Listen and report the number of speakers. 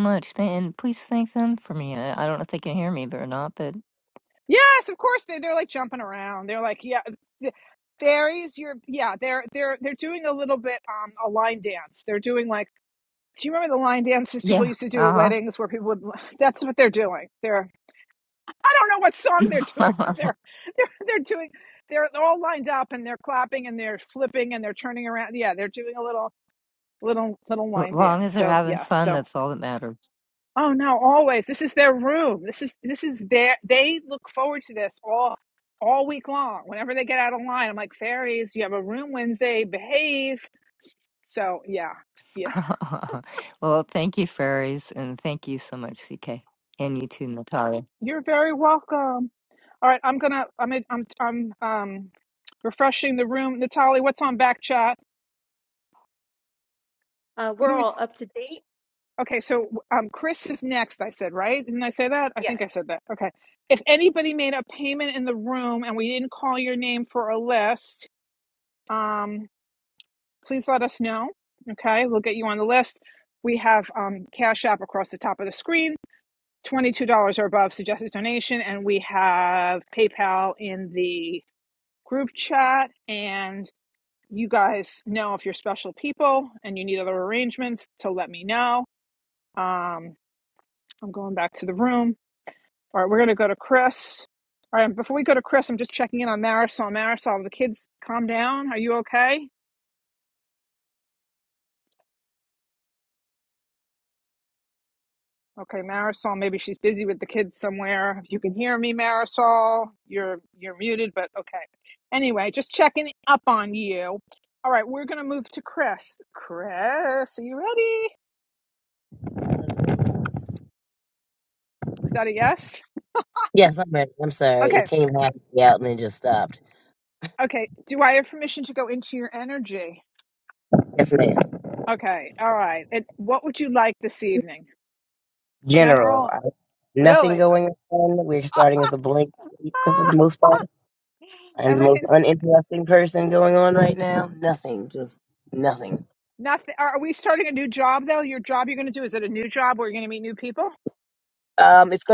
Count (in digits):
4